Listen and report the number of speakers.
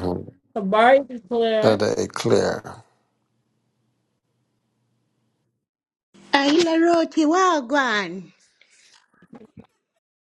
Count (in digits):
3